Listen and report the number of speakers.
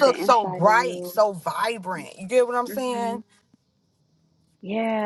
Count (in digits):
2